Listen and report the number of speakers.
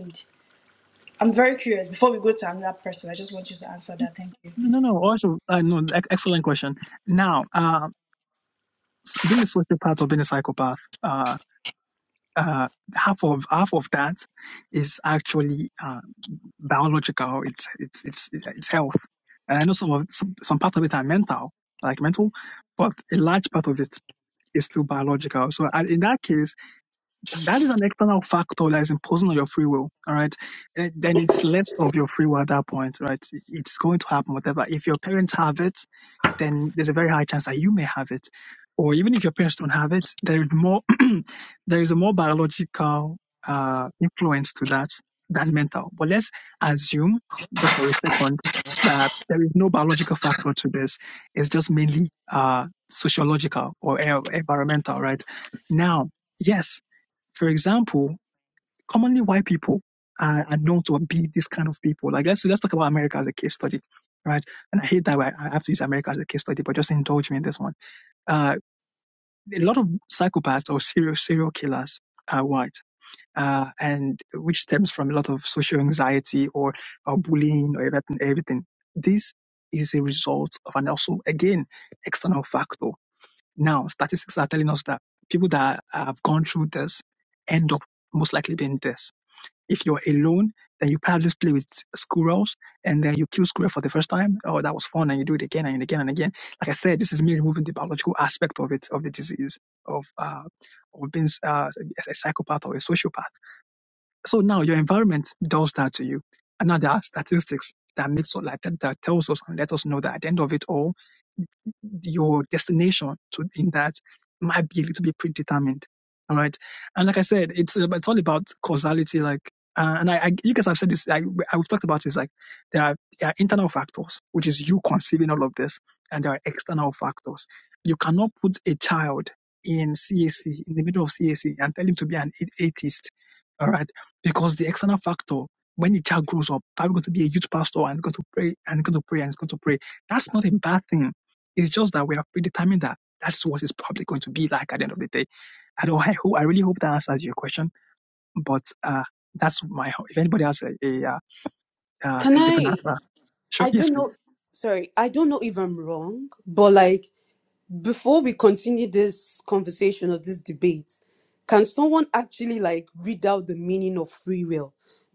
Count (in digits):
3